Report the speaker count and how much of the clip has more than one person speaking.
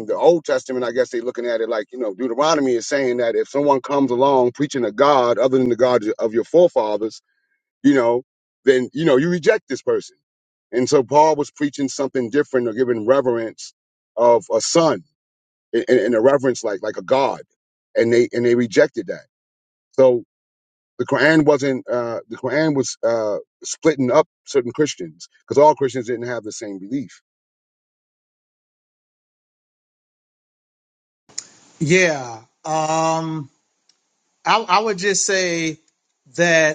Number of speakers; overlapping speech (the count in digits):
2, no overlap